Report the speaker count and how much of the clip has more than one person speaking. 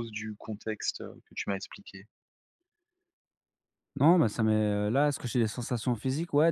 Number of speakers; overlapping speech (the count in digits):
2, no overlap